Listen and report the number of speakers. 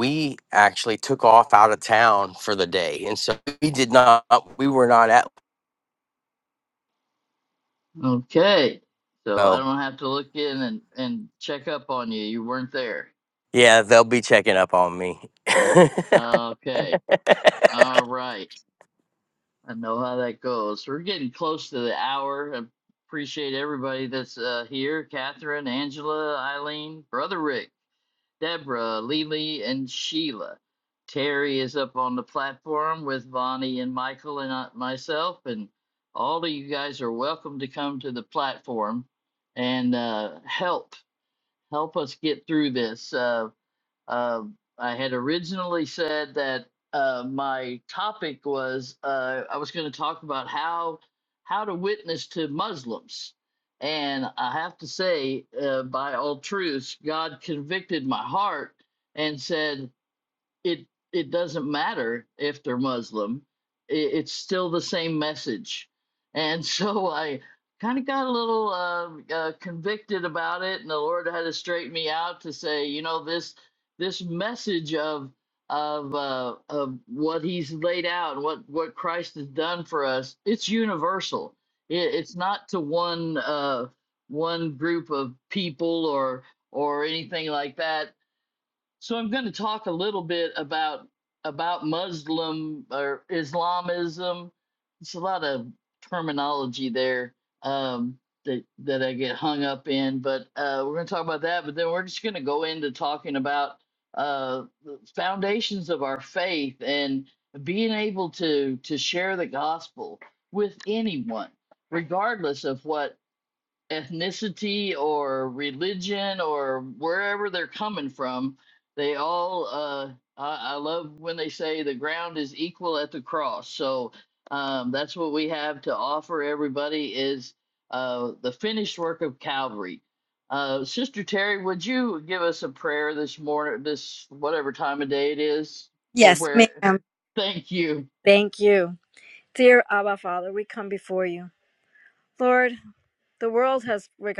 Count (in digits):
3